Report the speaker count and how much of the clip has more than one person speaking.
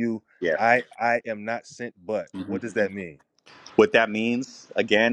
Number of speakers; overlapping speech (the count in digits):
2, about 6%